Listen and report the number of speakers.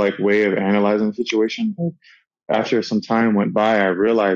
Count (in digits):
1